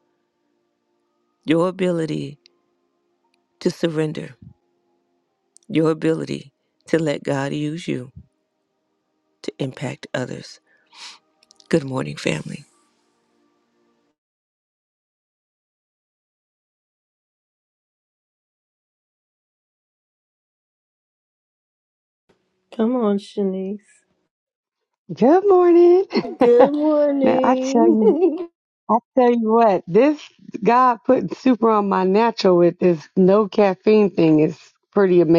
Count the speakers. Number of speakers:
three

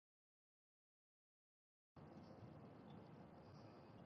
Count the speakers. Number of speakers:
zero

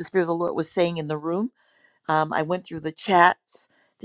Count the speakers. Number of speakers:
one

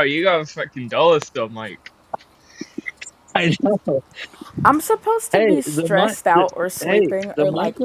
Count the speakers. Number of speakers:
three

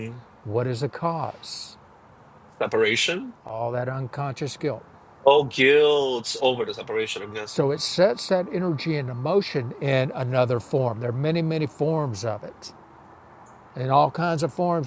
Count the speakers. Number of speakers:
two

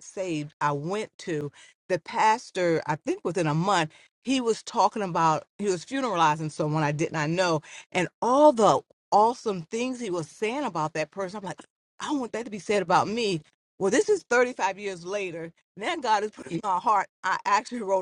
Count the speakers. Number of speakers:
one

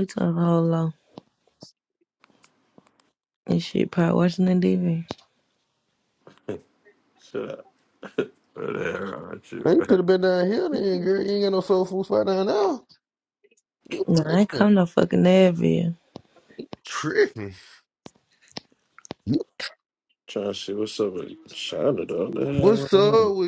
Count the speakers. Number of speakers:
three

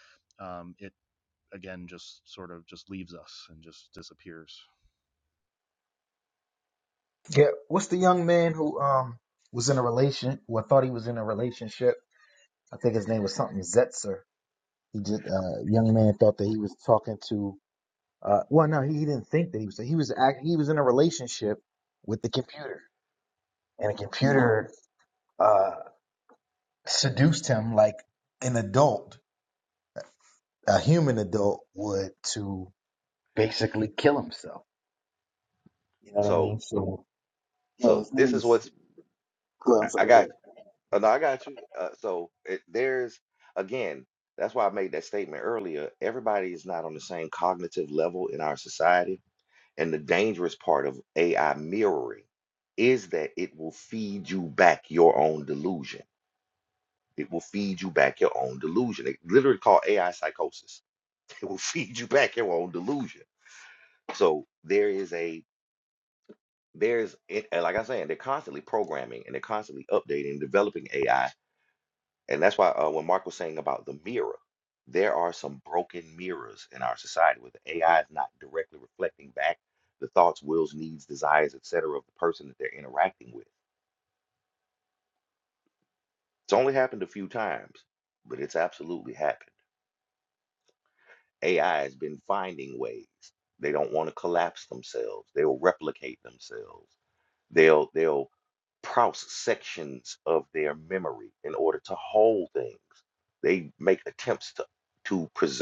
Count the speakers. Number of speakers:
three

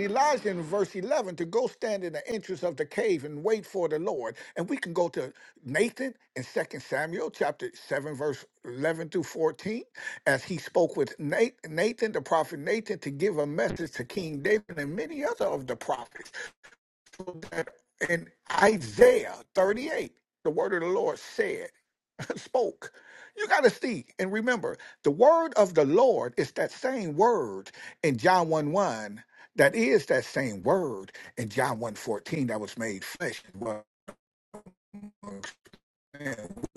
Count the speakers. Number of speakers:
one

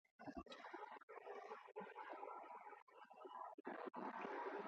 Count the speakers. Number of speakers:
zero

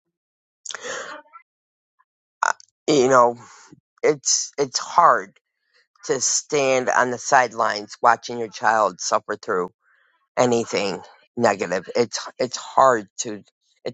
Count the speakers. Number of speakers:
one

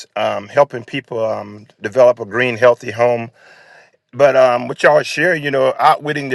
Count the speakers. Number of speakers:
one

